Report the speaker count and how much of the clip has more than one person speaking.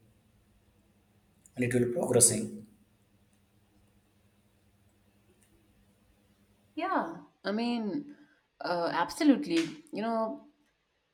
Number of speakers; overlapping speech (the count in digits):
2, no overlap